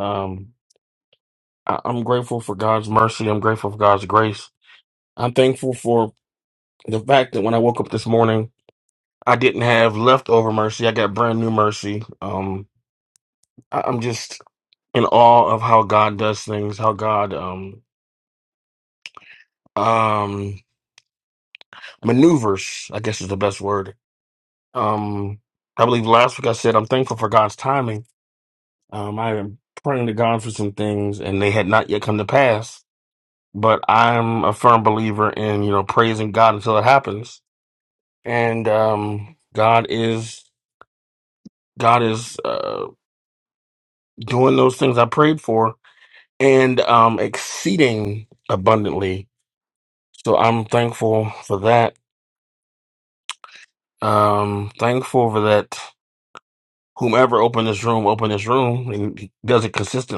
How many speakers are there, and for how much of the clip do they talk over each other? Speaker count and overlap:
1, no overlap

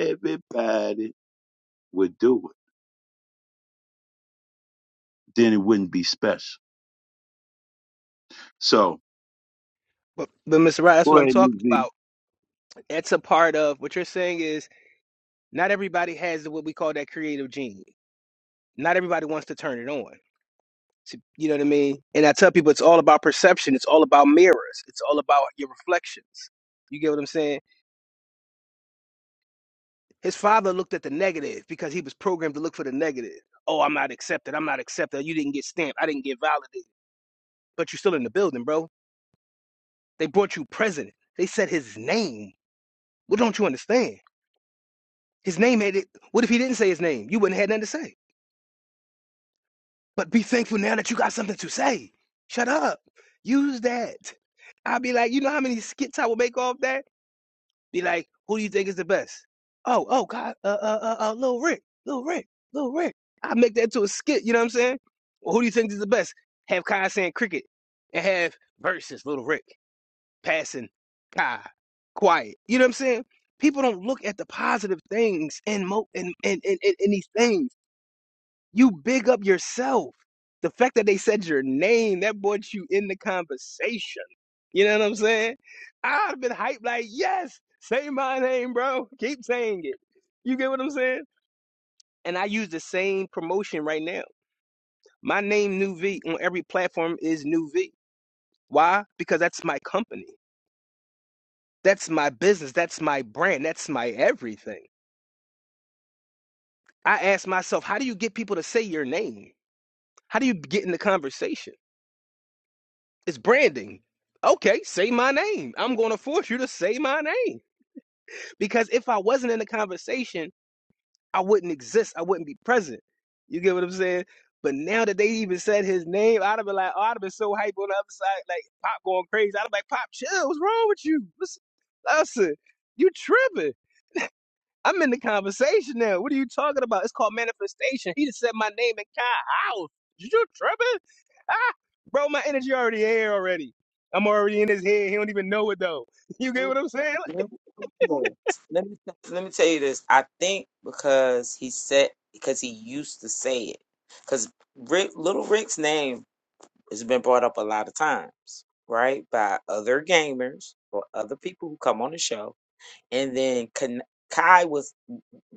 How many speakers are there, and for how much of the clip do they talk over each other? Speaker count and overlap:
3, about 1%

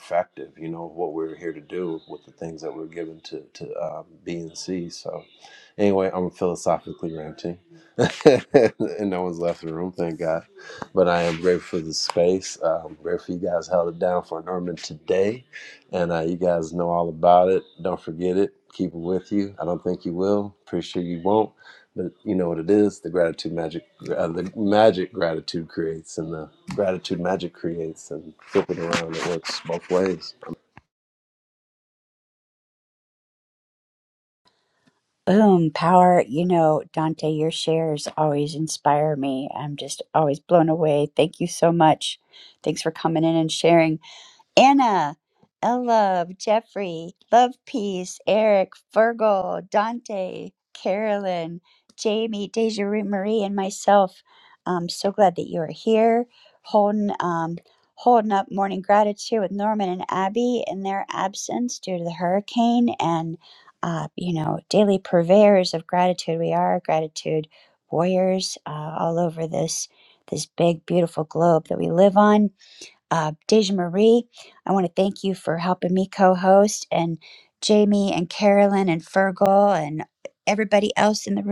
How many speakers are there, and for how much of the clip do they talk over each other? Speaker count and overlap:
2, no overlap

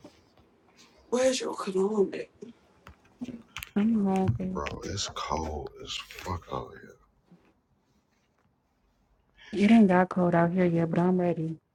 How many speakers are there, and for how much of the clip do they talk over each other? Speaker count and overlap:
3, about 1%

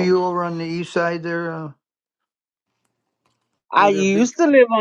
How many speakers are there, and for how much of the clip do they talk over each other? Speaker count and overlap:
2, about 14%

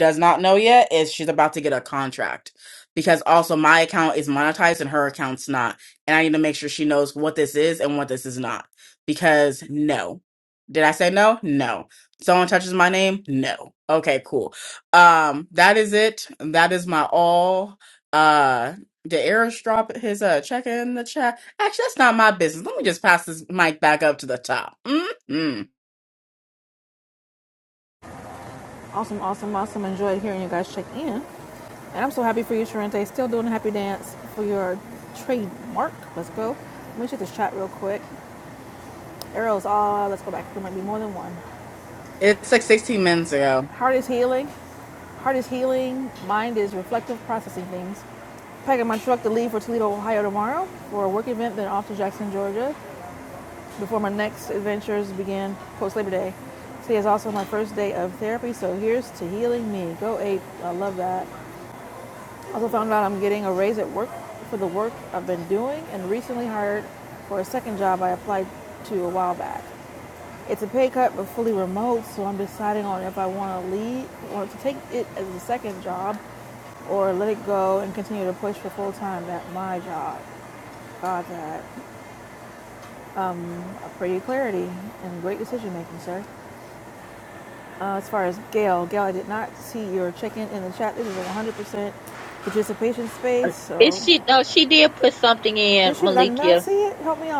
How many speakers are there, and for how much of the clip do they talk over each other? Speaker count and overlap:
3, about 1%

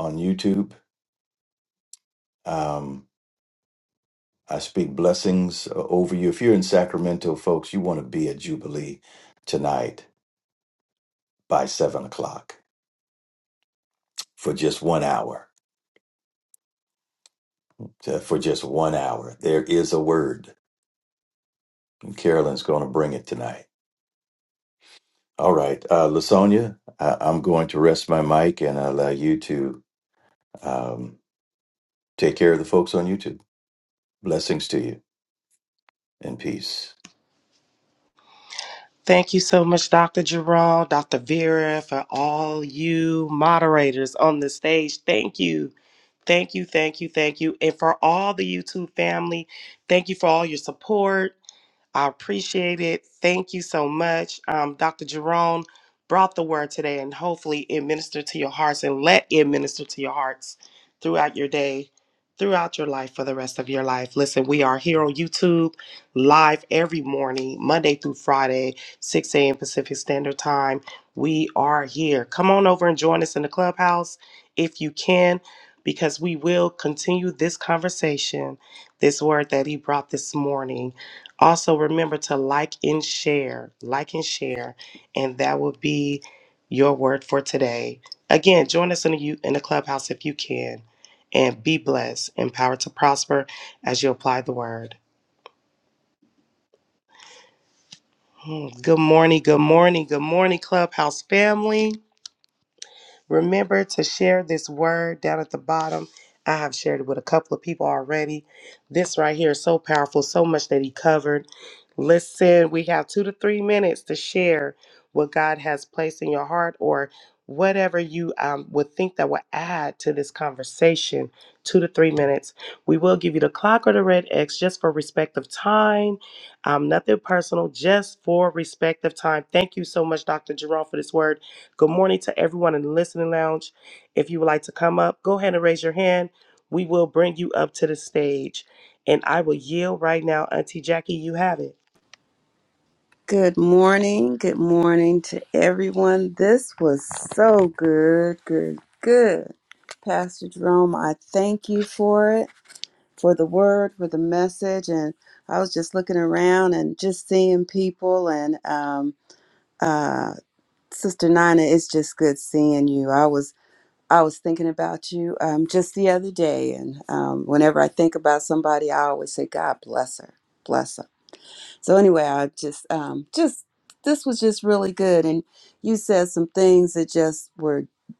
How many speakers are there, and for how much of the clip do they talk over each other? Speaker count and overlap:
3, no overlap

